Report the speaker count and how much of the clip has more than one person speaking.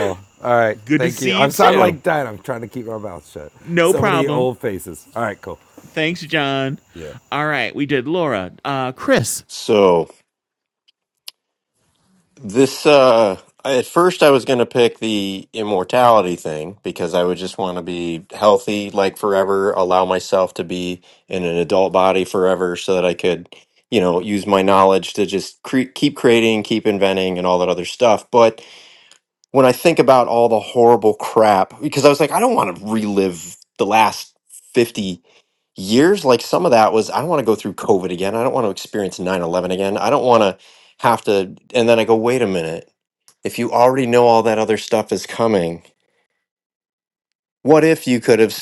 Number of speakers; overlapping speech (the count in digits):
3, about 3%